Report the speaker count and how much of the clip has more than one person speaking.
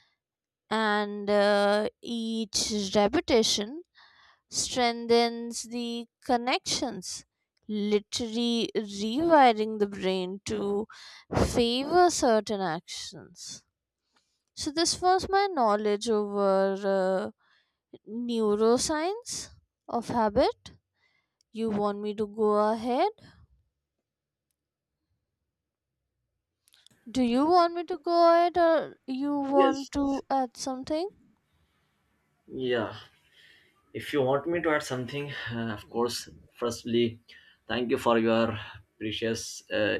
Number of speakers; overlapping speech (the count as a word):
two, about 1%